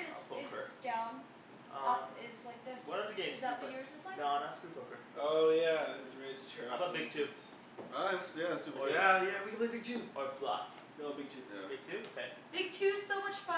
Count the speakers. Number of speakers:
4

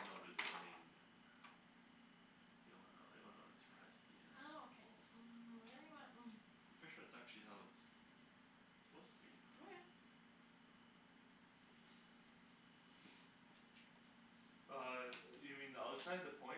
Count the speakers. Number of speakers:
3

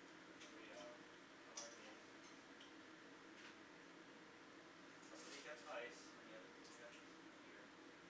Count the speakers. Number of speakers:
1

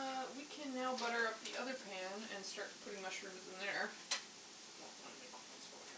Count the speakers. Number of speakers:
1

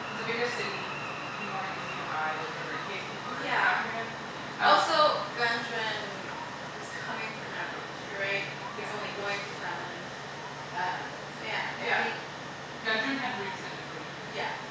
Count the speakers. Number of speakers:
2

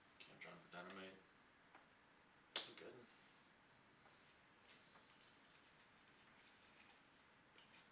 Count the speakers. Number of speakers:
1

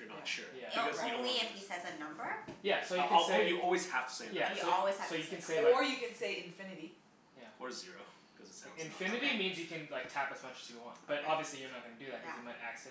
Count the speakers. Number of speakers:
4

